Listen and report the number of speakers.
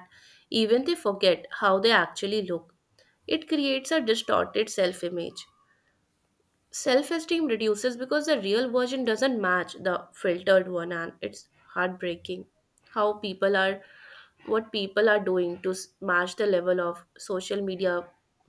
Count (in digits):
1